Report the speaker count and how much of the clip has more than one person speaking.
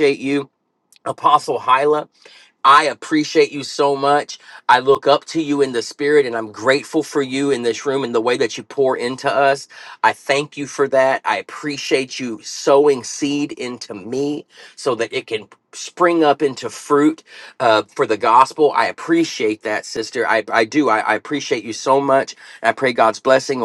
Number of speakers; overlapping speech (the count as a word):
one, no overlap